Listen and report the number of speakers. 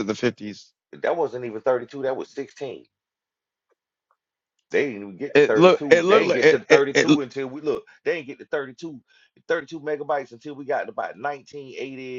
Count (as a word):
two